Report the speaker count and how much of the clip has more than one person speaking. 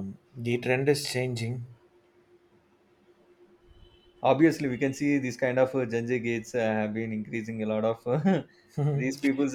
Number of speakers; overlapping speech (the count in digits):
2, no overlap